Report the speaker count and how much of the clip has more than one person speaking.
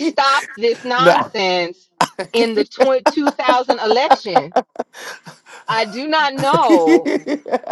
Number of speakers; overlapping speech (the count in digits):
2, about 9%